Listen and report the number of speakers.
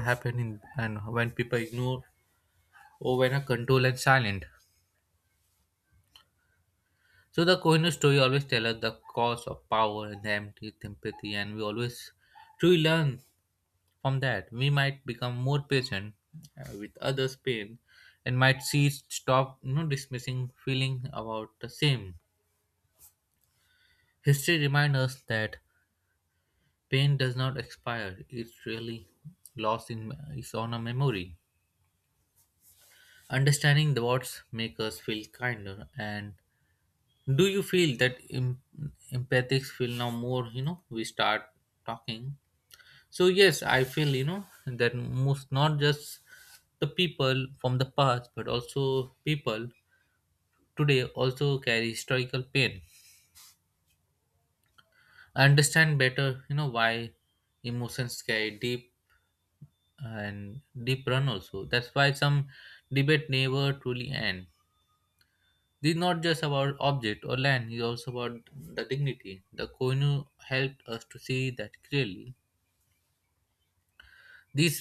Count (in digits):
1